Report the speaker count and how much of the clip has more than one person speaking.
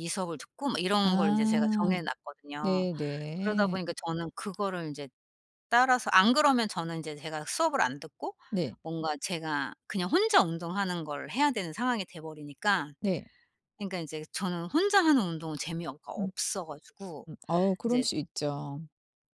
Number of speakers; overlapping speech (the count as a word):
two, about 9%